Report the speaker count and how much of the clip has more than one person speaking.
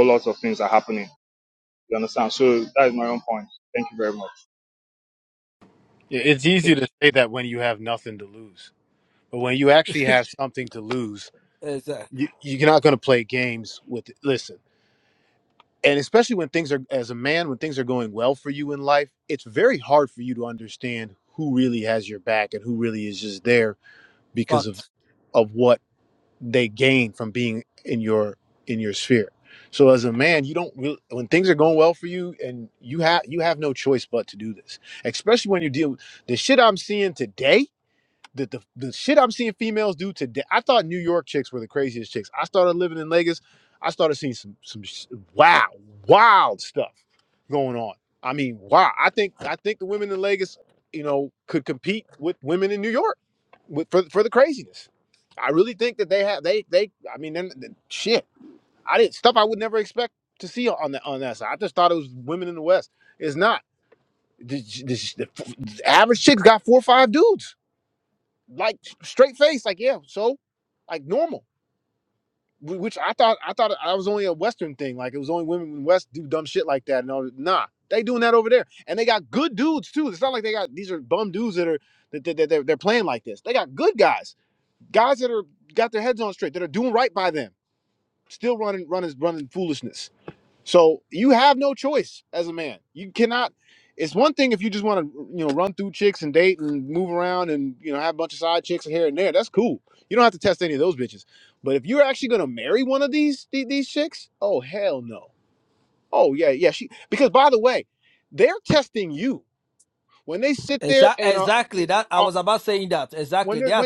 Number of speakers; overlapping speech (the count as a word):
three, about 1%